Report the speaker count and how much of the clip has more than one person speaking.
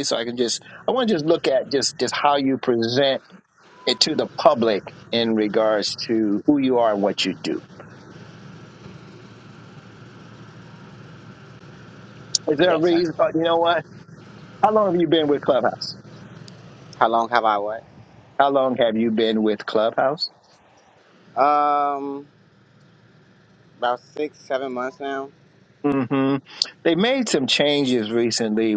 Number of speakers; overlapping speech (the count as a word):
two, about 1%